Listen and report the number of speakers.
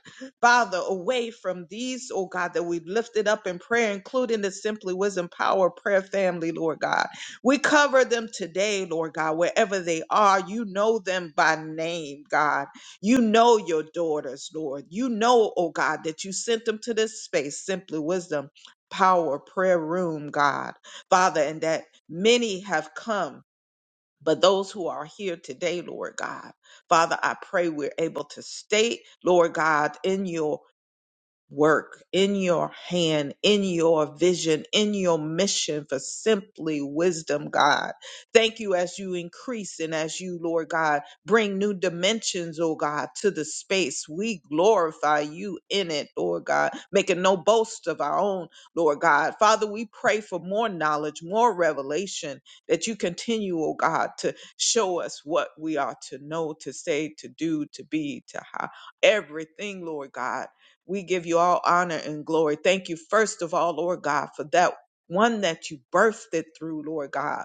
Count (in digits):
1